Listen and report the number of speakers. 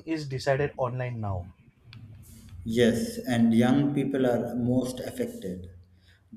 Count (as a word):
two